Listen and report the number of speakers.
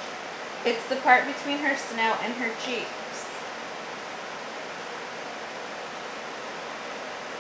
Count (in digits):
1